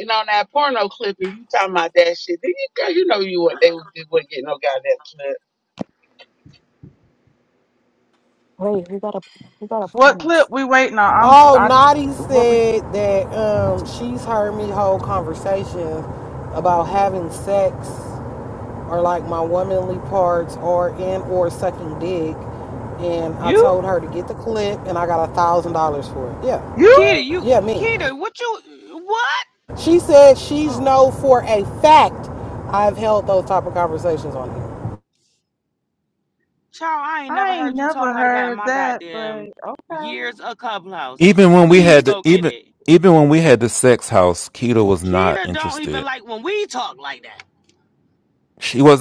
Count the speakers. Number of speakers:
6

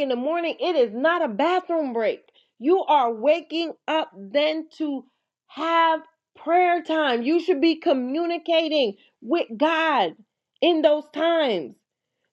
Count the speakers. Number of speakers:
1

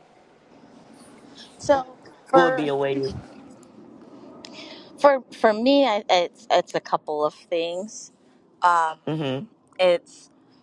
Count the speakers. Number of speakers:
2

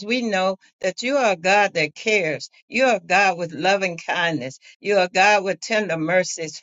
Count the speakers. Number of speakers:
1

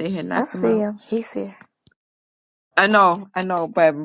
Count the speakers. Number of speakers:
2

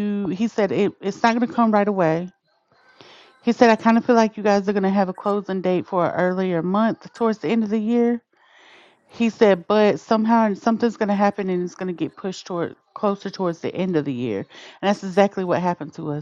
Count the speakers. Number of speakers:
1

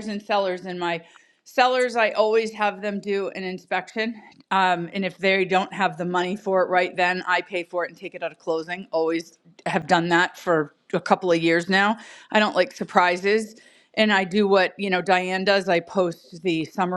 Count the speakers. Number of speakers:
1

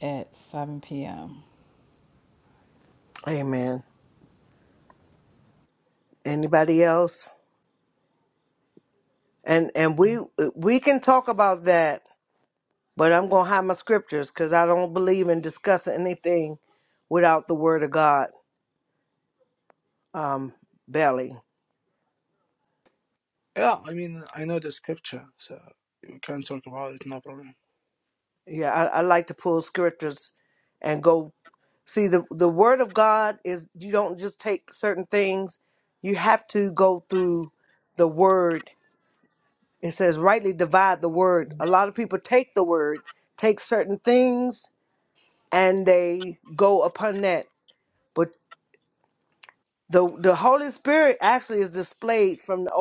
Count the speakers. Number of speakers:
3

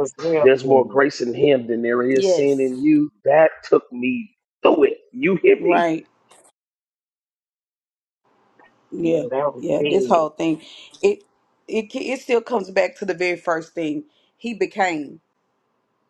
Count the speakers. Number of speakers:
3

